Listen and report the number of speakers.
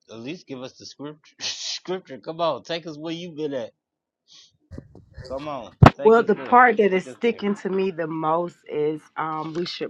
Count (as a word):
two